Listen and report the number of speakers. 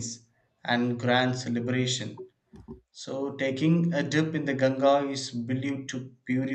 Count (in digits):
1